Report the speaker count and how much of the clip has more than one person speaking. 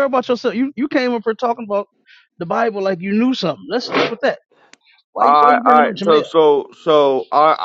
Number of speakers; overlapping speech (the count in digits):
2, about 14%